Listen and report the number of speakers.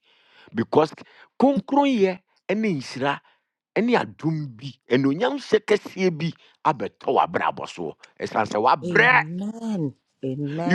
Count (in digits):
2